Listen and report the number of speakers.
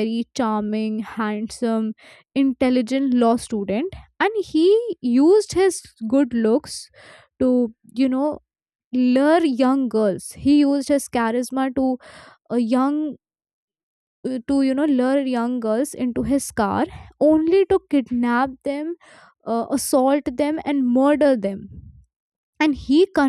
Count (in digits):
1